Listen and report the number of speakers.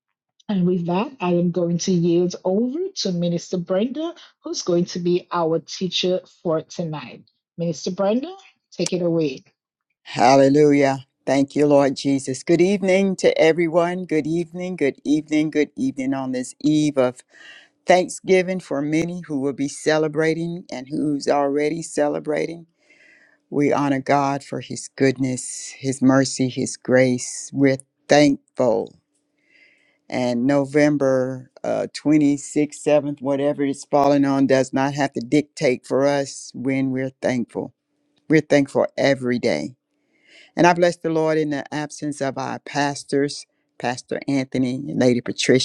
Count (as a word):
two